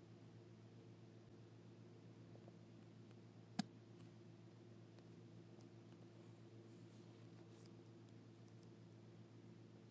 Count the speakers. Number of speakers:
zero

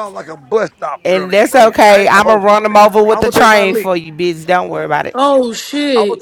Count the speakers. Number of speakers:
three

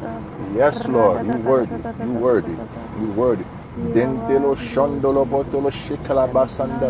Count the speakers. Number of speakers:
two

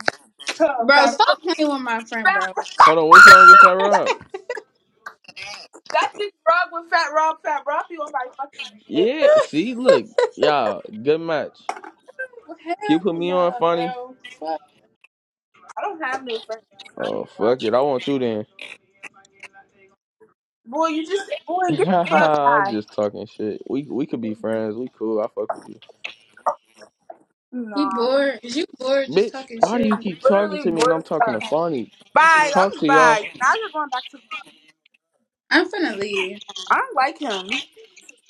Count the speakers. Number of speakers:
three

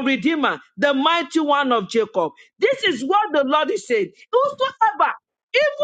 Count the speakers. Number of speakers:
one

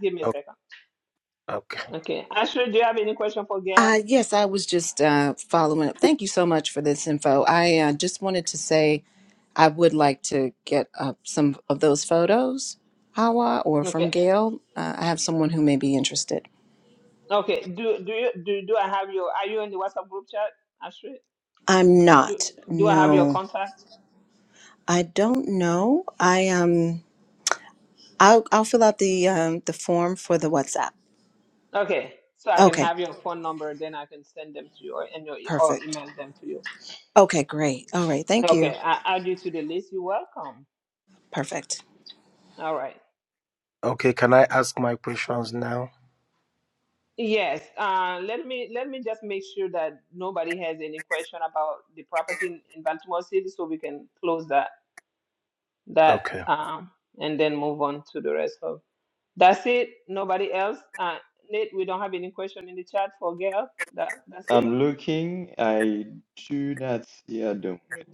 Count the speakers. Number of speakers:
four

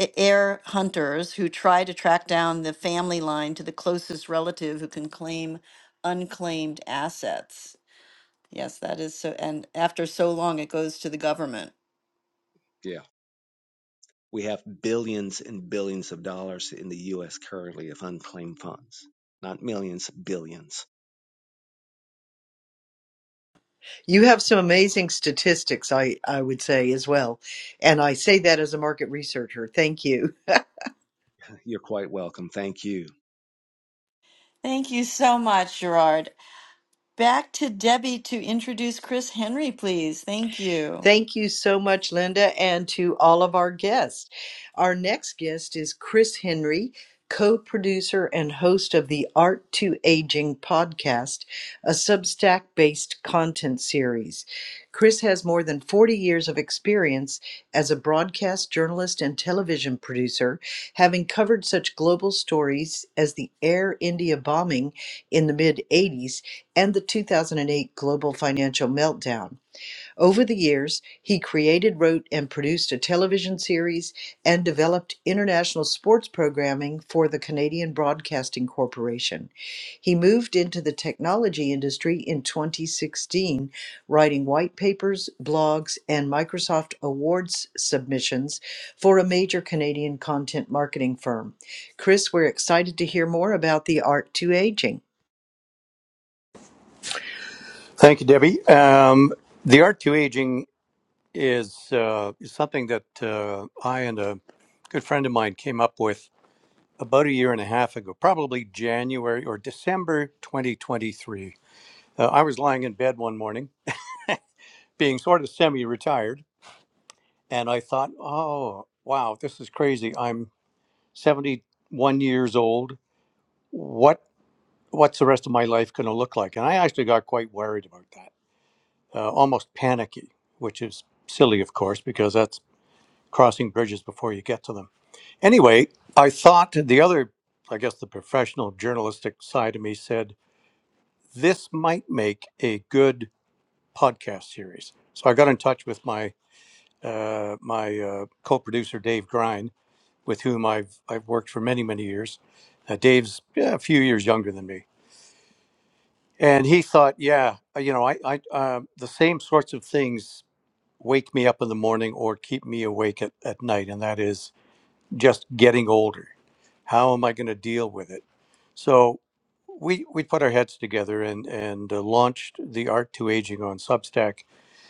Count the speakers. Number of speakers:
four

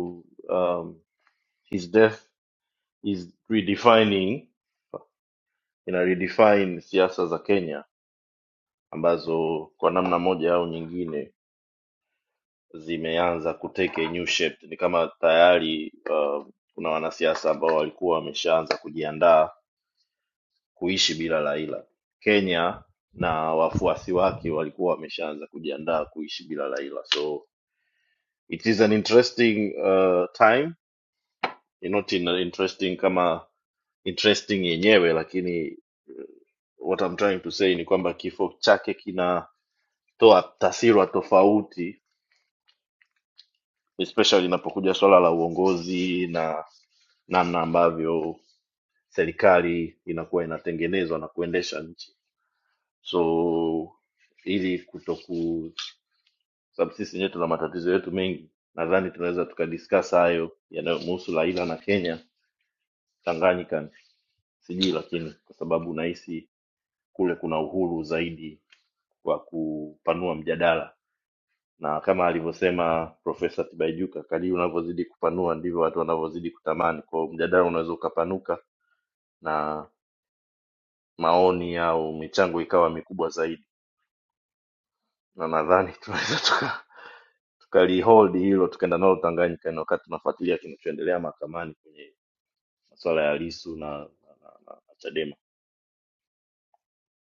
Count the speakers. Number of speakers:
one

